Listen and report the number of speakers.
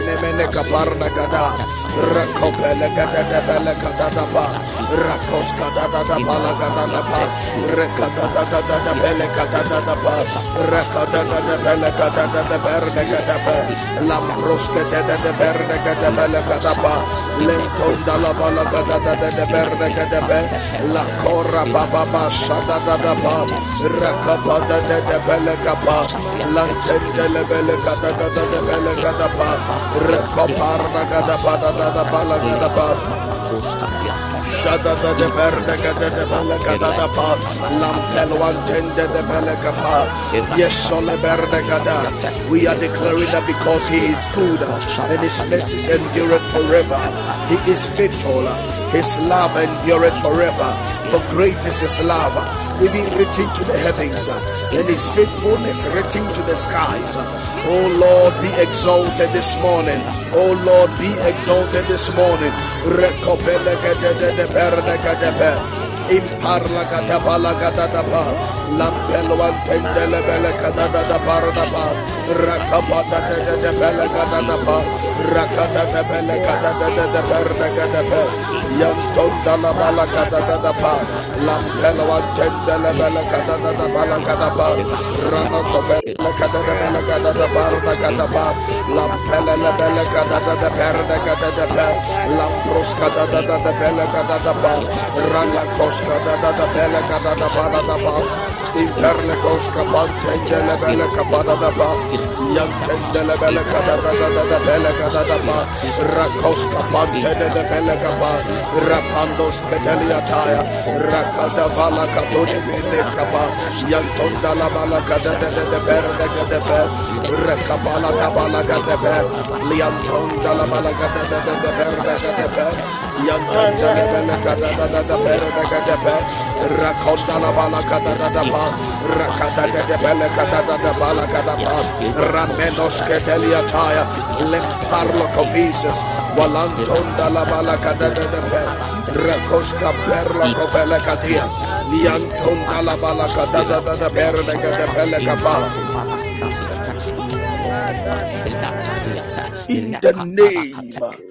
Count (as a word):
three